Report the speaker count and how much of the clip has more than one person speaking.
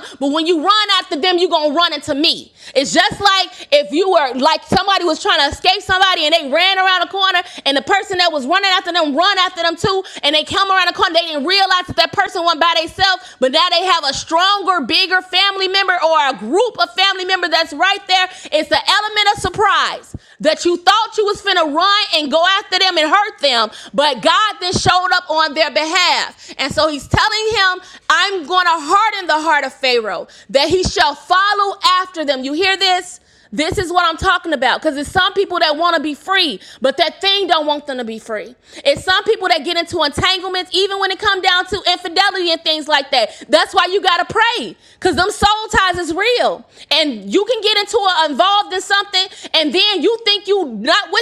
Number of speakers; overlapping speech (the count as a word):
one, no overlap